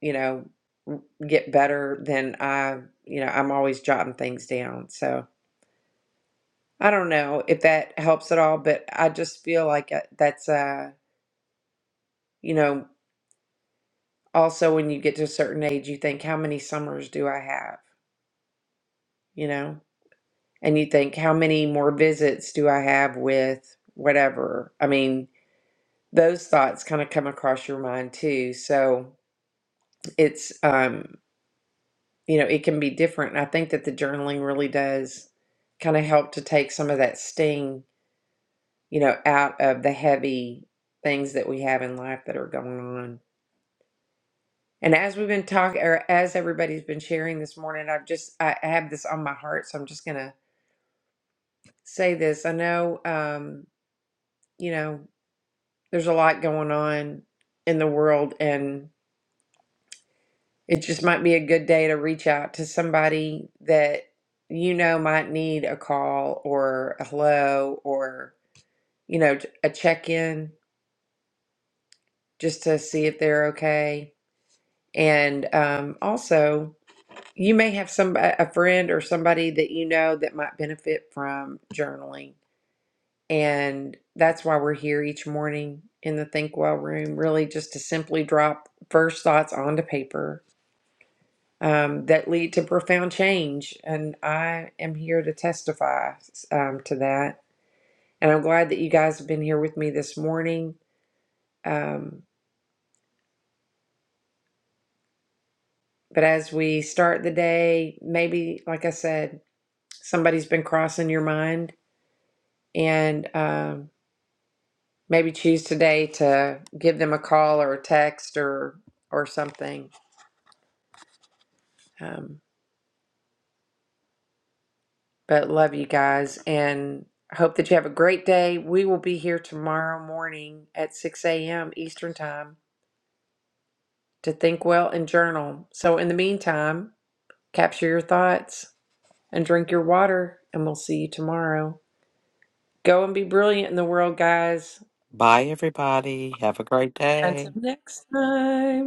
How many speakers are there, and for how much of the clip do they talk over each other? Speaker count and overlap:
2, under 1%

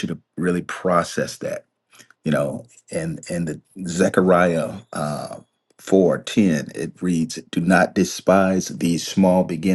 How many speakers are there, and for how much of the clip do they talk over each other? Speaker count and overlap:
1, no overlap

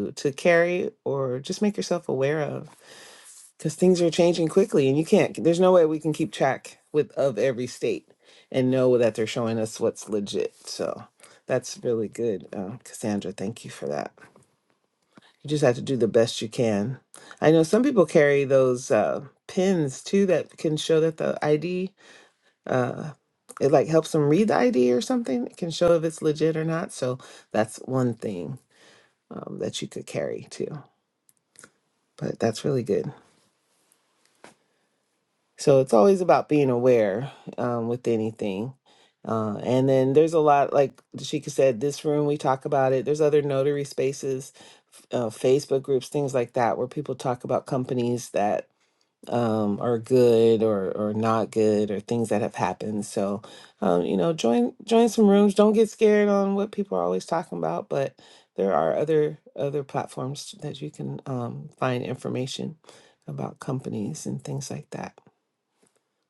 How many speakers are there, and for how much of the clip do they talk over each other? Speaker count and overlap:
1, no overlap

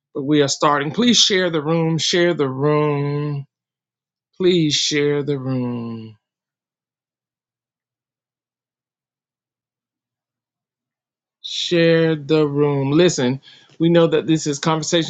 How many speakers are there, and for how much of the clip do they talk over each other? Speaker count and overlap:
1, no overlap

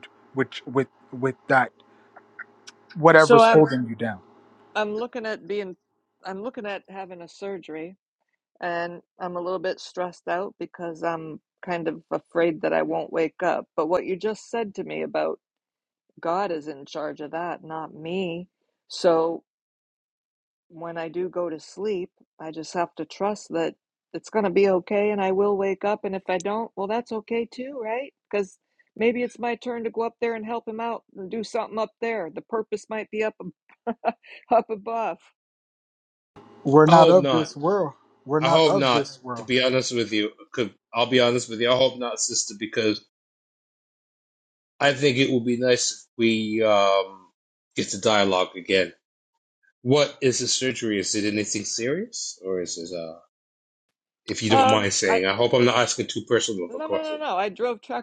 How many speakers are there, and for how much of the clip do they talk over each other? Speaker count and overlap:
3, about 5%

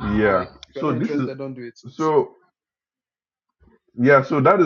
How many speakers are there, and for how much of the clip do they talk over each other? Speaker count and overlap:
2, about 20%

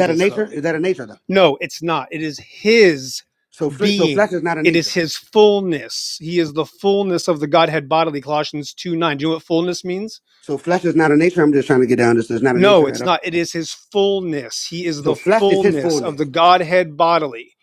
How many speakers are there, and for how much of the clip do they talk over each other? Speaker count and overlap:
2, about 16%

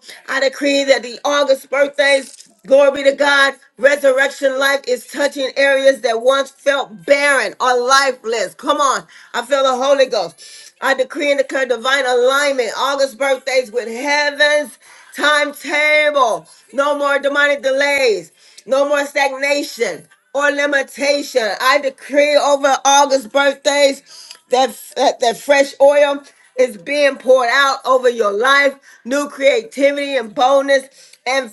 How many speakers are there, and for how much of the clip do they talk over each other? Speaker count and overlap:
1, no overlap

